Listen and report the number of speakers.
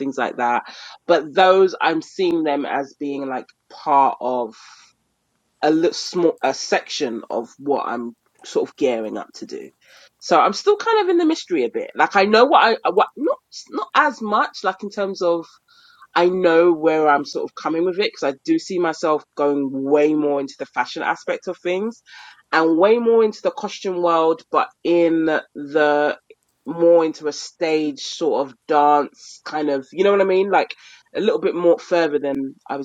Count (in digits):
1